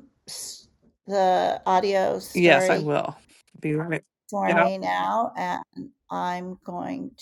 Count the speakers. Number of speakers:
2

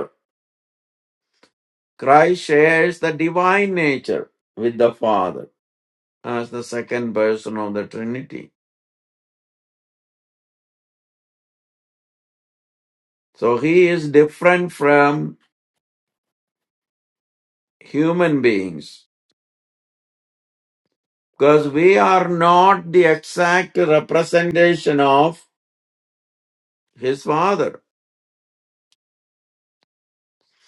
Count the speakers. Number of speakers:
1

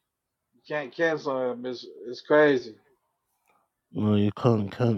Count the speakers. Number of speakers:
2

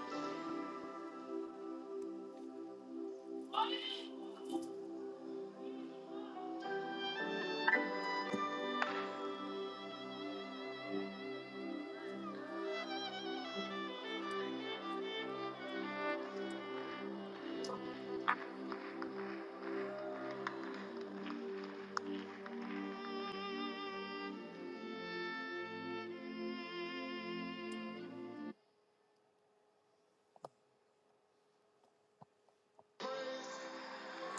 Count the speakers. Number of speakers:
0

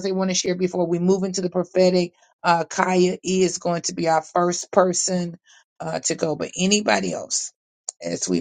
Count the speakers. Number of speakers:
1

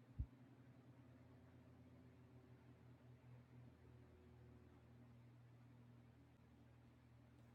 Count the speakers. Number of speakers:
0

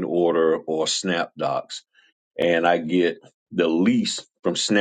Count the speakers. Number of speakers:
1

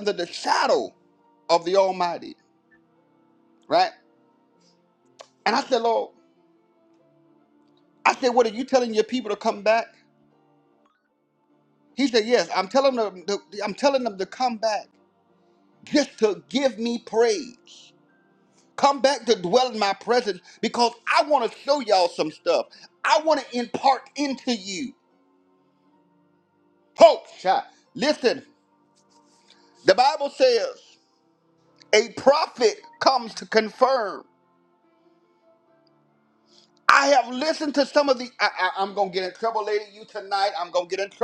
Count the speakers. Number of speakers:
1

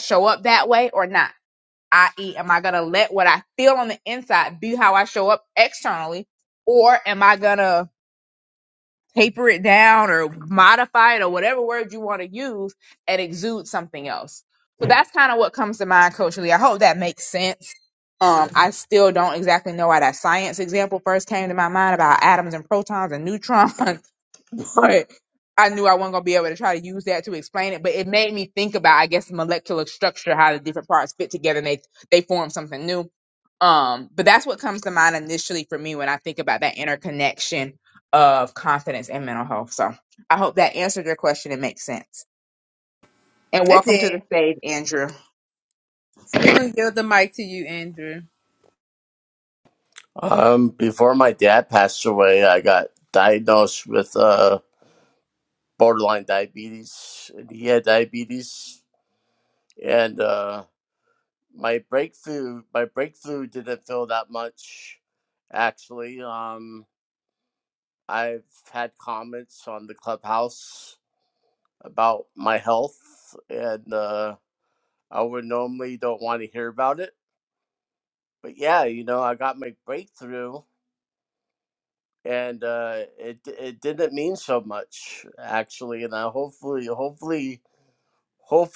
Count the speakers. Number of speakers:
3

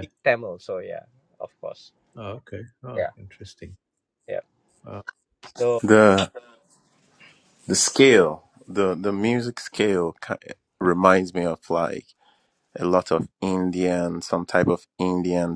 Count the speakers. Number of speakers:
3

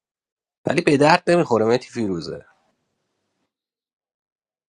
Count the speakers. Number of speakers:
1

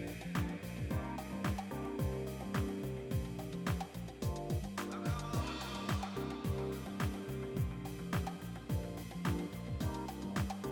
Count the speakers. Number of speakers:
0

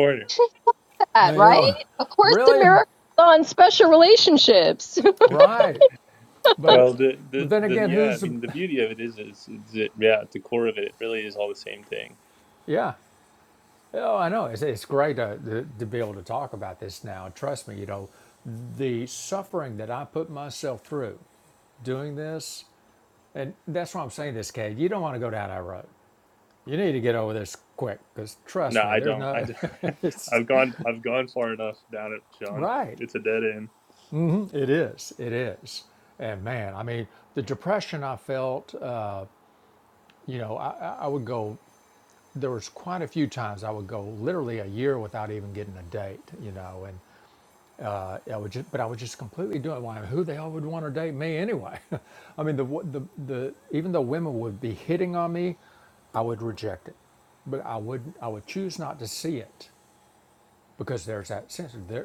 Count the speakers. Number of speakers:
3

